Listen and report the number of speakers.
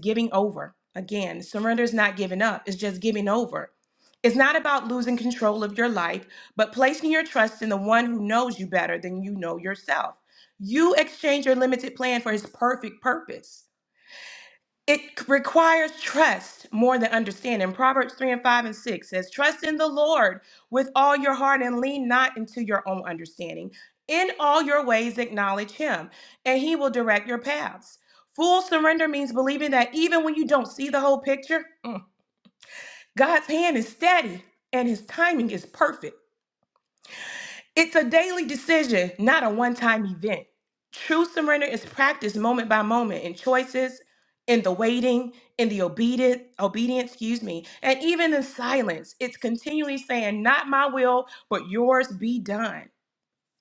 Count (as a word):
one